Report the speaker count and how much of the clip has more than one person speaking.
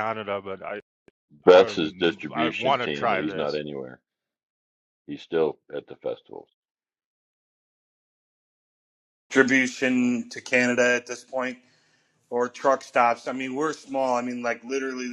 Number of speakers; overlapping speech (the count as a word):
three, about 9%